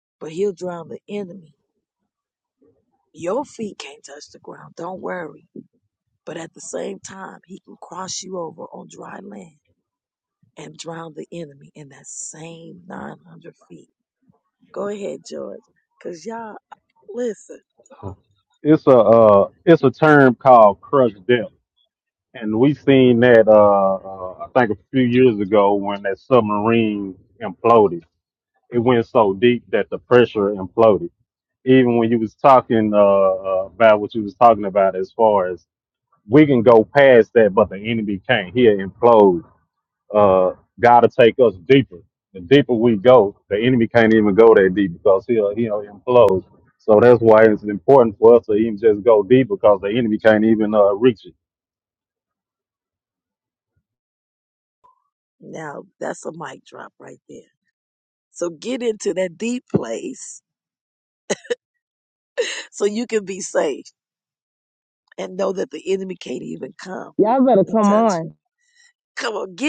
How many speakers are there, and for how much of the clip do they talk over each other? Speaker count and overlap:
3, about 1%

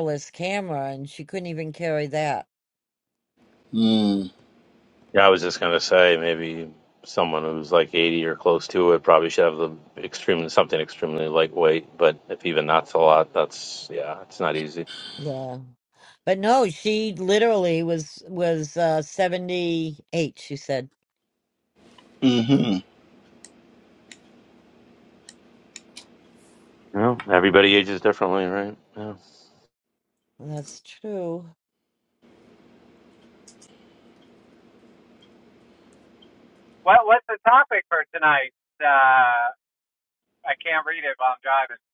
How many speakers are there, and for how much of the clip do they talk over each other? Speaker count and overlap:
4, no overlap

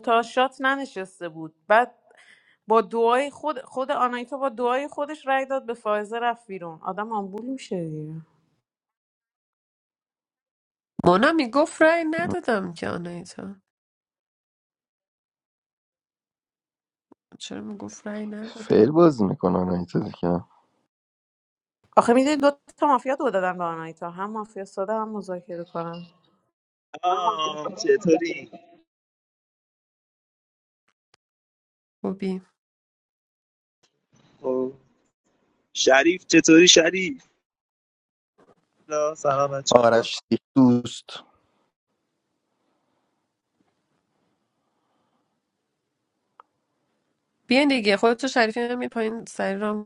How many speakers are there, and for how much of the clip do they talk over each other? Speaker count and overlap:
4, about 1%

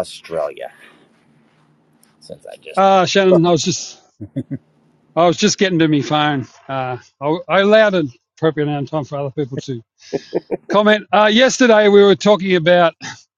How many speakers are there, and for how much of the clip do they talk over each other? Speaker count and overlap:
2, under 1%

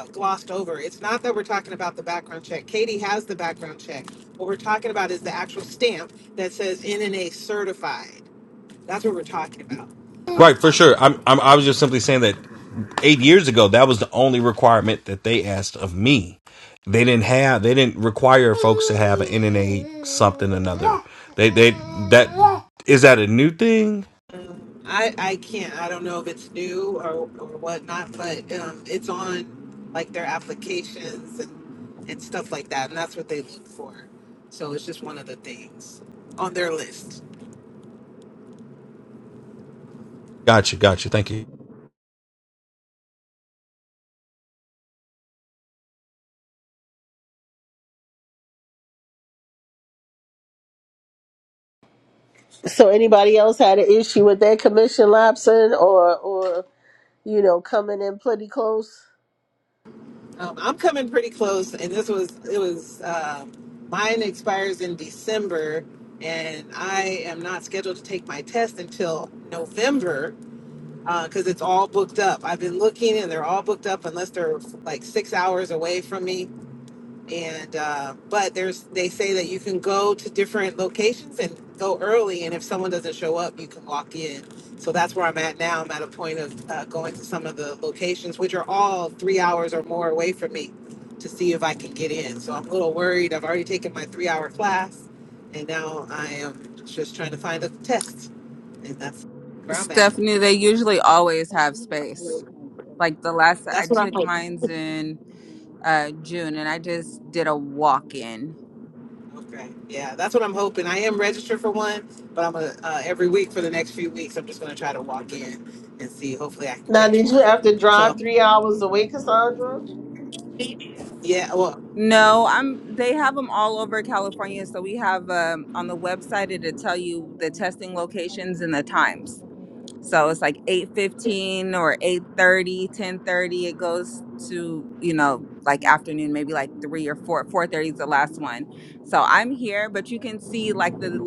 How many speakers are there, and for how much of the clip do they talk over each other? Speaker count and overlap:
4, about 2%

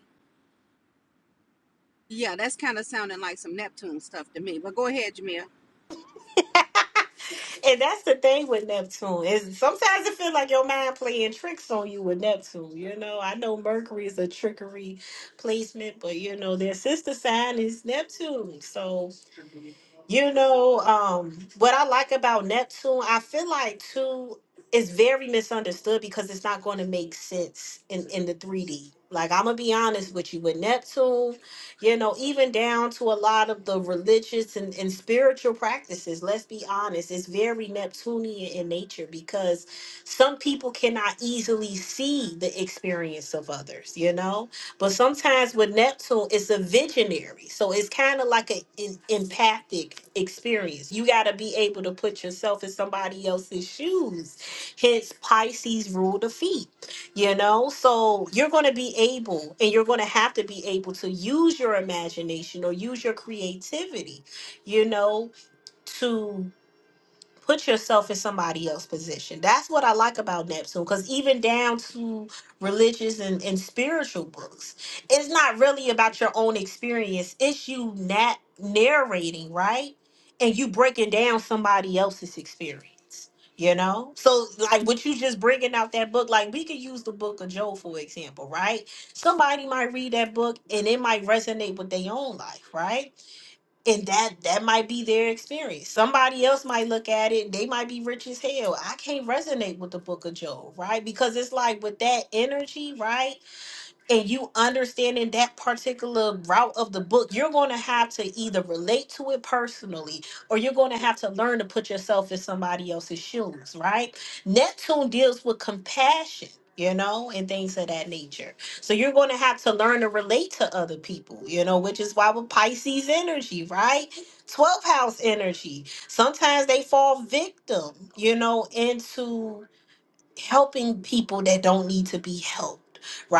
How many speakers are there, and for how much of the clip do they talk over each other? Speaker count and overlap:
2, no overlap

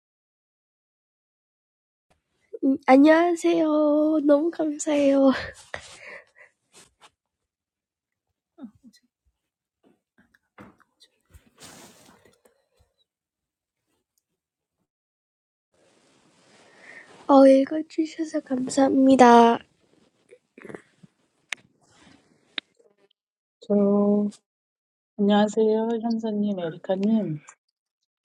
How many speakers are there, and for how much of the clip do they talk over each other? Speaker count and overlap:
2, no overlap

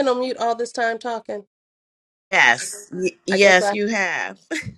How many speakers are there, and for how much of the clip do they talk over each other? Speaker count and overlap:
2, about 10%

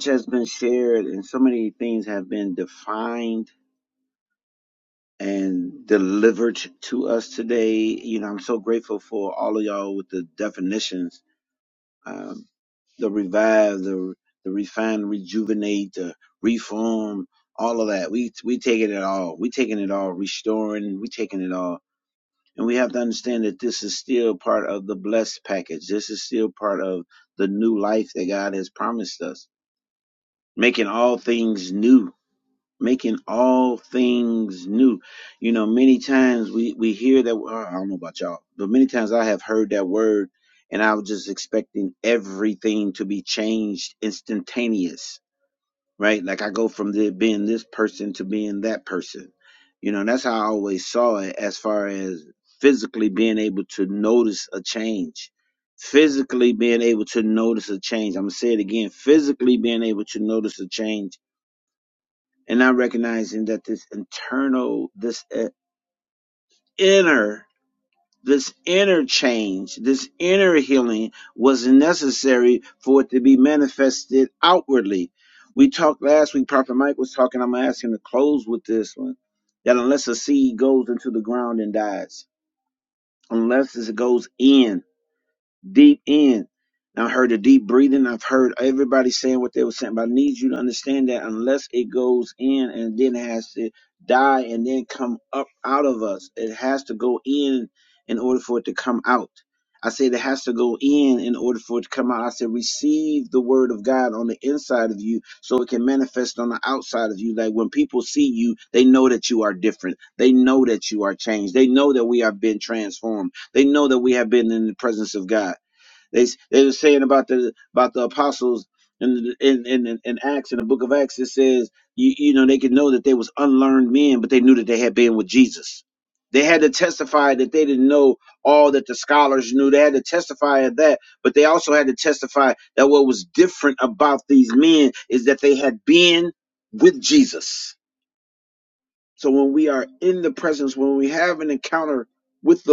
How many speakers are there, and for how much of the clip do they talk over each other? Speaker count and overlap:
1, no overlap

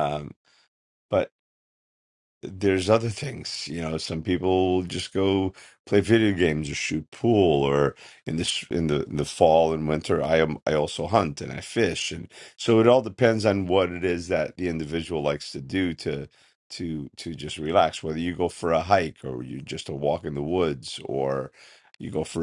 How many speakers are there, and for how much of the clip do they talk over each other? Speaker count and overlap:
1, no overlap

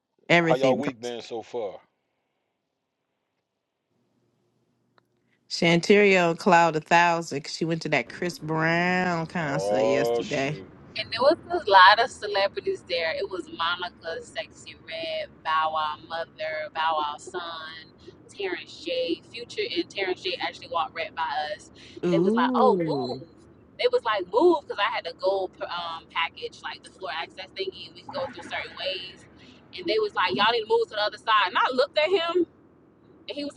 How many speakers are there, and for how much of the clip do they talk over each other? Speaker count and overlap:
3, about 8%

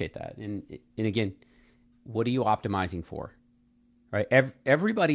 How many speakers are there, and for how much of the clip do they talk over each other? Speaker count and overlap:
1, no overlap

